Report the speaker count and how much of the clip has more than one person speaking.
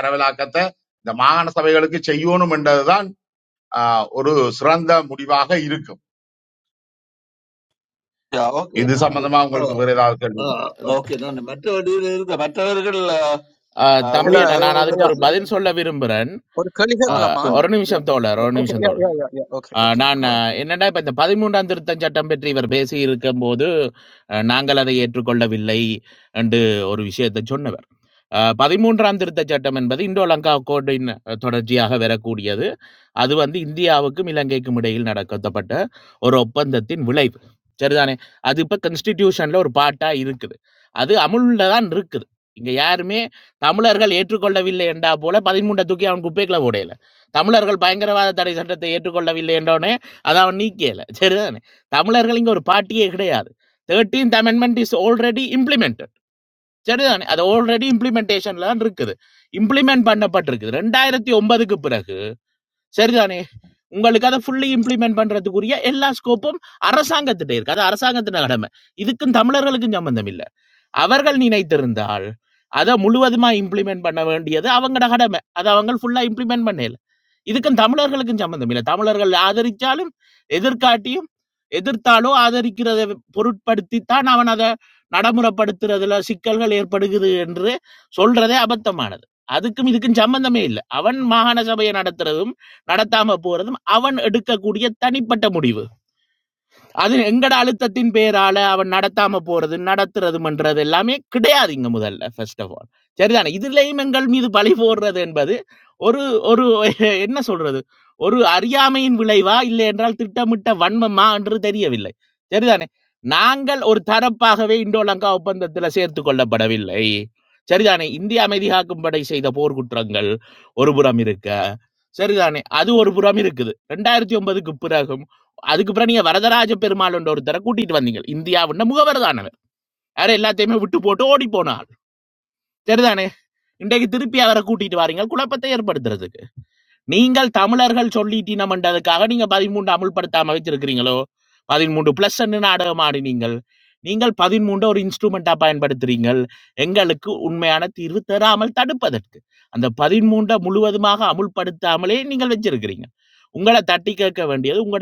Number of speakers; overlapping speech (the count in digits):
4, about 3%